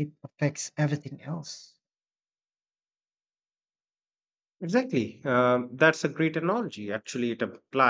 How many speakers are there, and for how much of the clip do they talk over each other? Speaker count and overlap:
2, no overlap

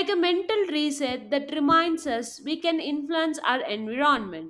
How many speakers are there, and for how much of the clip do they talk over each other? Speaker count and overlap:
1, no overlap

